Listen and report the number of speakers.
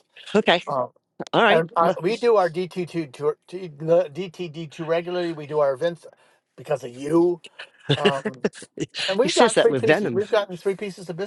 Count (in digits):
2